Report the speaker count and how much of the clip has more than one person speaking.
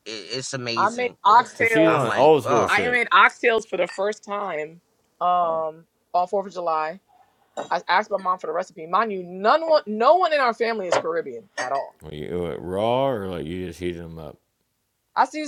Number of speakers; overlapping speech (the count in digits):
3, about 11%